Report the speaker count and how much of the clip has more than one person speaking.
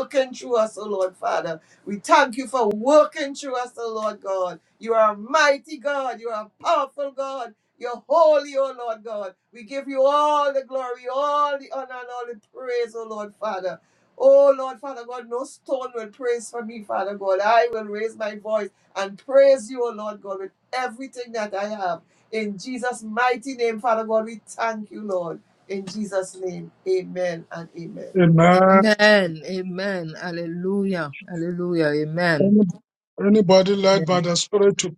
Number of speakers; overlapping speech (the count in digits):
3, about 2%